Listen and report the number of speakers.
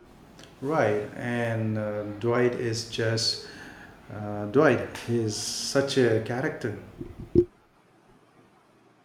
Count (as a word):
one